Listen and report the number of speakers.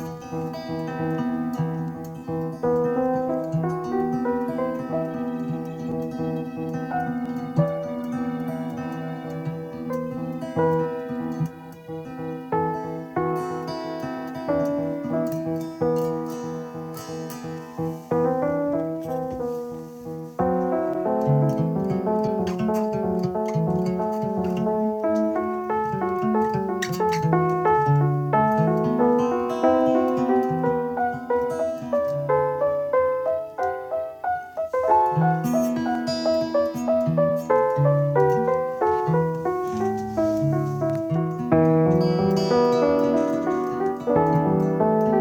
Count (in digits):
0